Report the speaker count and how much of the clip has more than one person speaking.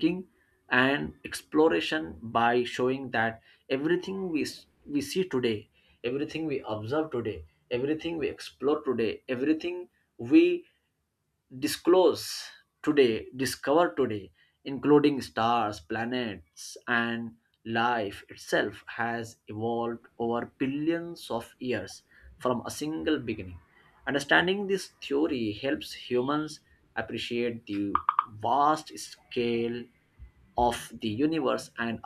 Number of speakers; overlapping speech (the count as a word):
one, no overlap